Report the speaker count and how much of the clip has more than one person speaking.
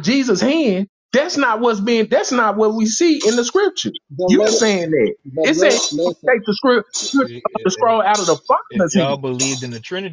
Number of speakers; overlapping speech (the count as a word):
three, about 19%